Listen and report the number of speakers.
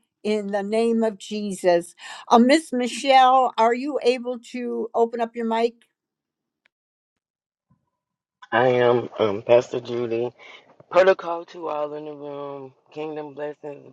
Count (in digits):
2